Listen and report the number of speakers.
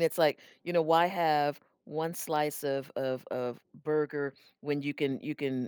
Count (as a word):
one